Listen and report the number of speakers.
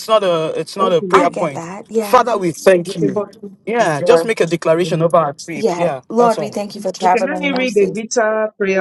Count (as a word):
three